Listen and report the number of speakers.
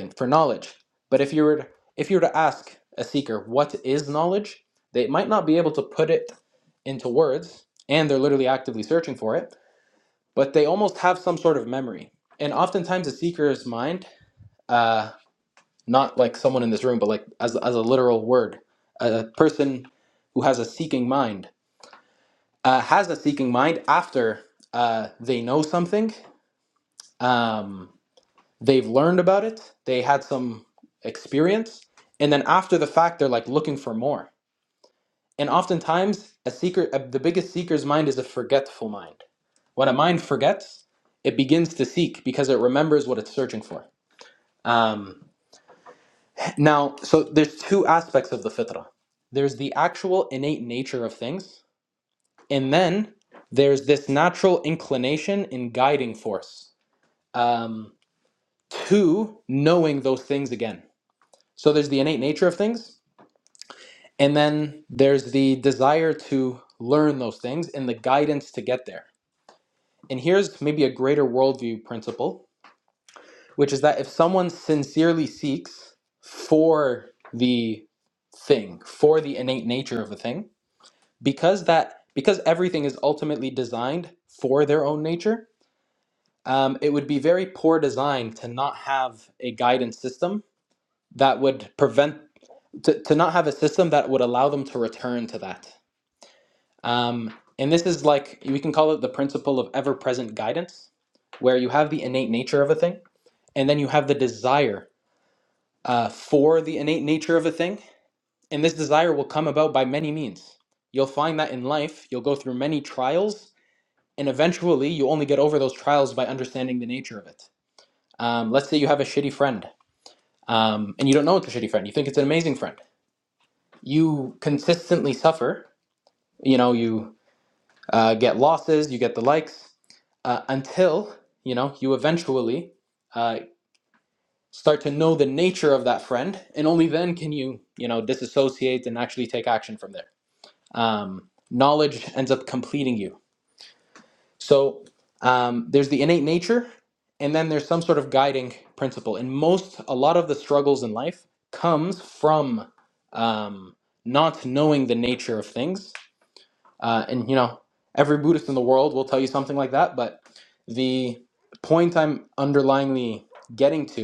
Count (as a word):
one